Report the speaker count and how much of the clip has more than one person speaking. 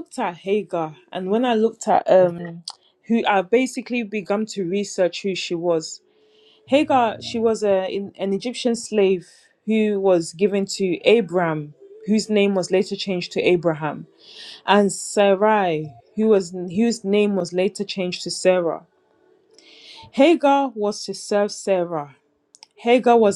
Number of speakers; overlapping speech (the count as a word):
one, no overlap